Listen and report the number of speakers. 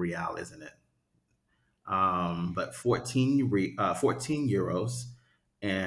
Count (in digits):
1